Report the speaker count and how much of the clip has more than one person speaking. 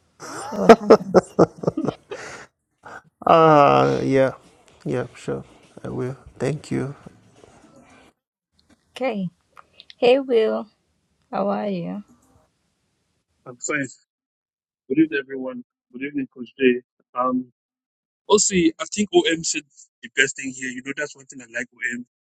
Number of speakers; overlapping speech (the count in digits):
3, no overlap